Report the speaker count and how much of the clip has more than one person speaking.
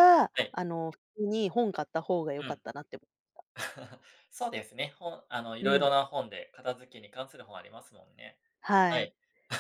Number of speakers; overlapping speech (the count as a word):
two, about 7%